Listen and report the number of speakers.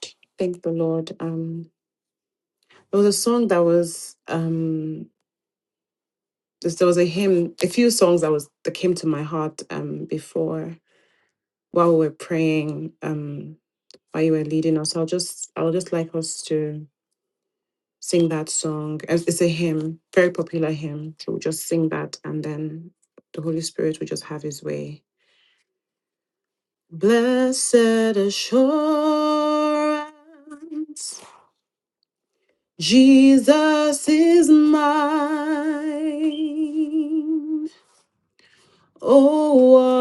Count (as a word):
one